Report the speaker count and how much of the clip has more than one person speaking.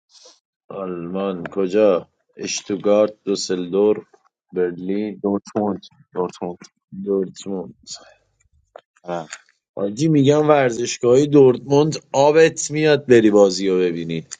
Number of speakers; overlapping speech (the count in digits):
2, no overlap